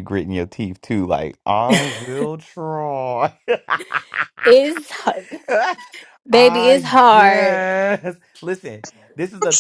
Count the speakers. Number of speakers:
2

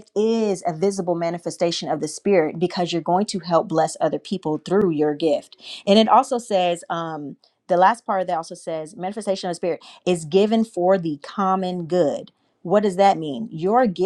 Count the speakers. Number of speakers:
1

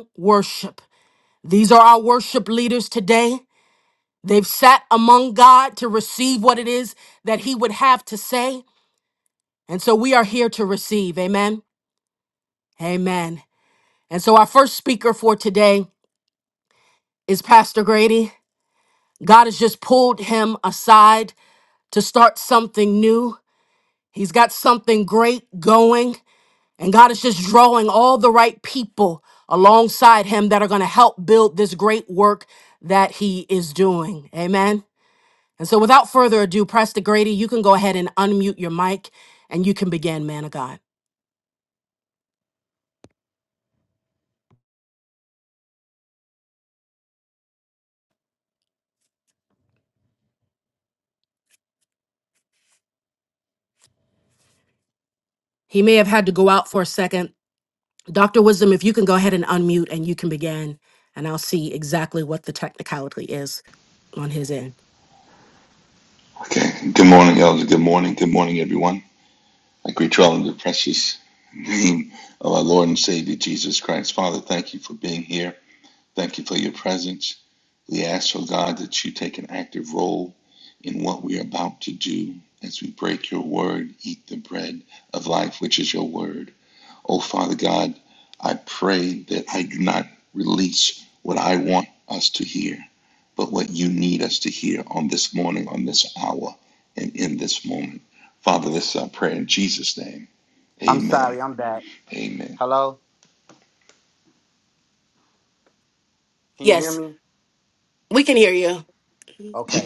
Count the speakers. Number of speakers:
3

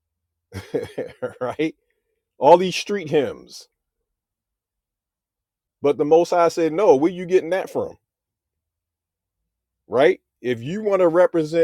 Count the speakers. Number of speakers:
1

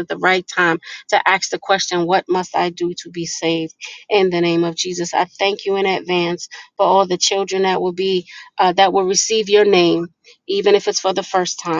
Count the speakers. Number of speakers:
1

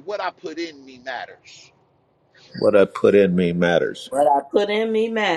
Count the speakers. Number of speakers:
3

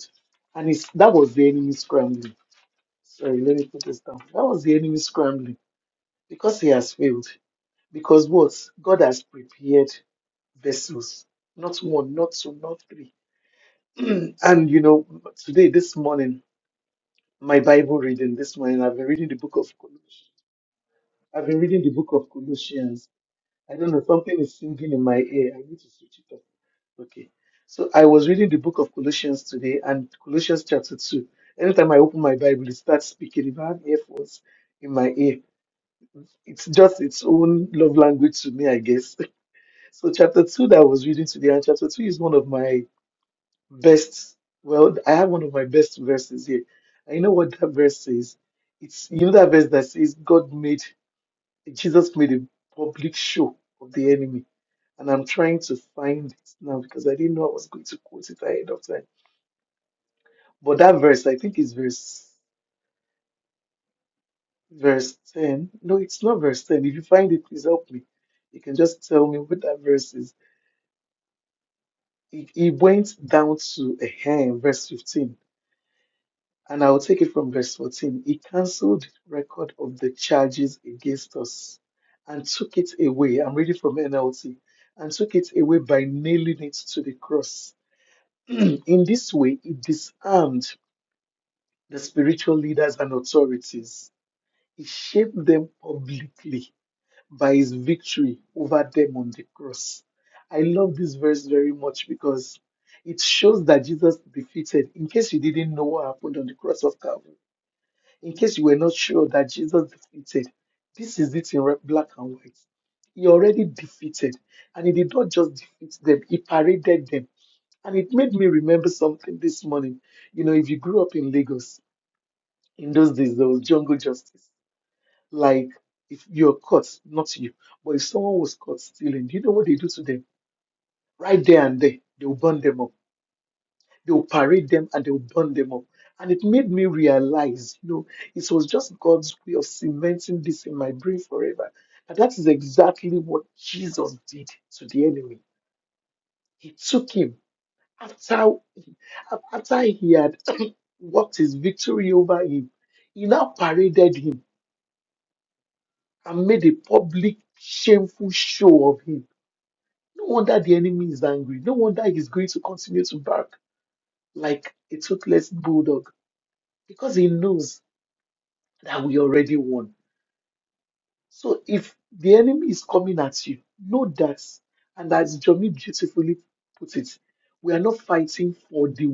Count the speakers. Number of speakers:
1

